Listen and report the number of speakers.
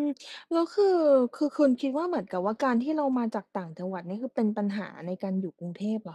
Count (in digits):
1